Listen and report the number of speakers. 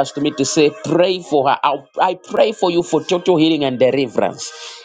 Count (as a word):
one